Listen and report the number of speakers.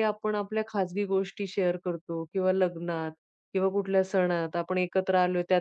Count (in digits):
1